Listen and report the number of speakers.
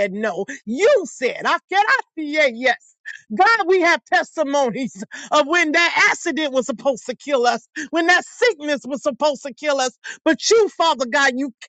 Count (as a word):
one